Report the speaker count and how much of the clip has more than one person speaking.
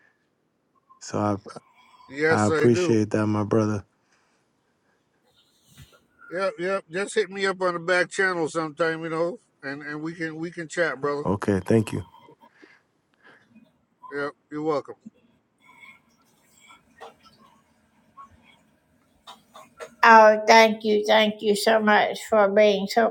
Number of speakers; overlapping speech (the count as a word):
three, about 3%